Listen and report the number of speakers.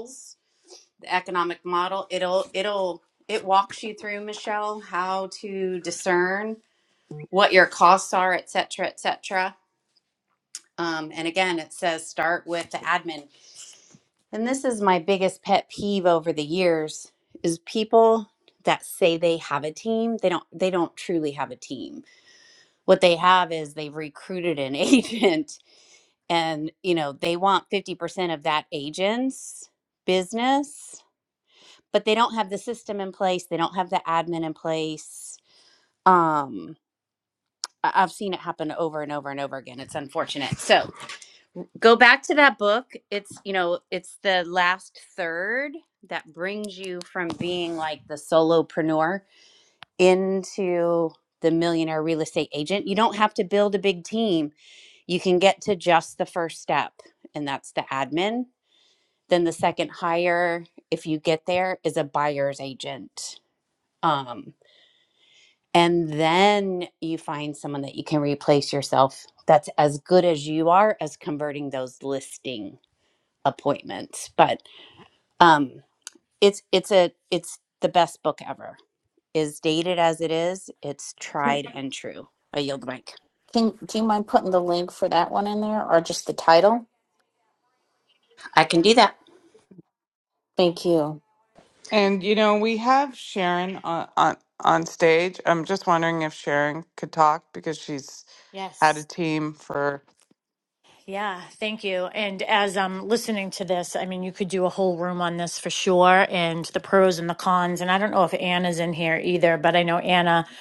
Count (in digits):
4